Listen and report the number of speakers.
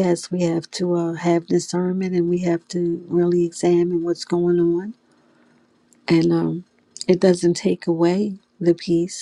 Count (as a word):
one